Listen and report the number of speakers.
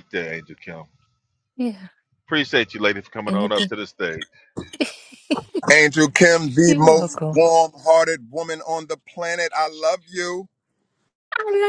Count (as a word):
three